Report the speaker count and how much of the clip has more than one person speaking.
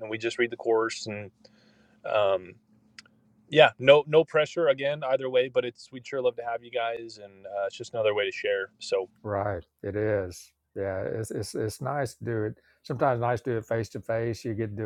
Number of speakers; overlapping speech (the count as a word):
two, no overlap